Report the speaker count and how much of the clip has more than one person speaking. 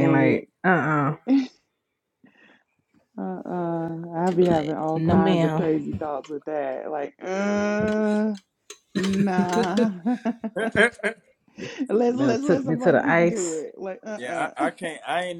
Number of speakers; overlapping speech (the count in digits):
3, about 24%